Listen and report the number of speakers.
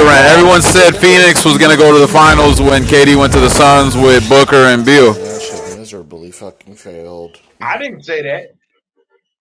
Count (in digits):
3